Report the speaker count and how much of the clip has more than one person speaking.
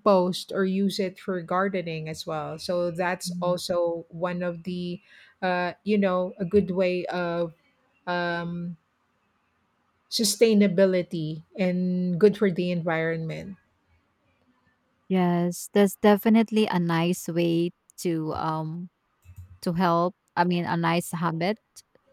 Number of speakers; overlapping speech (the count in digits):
2, about 1%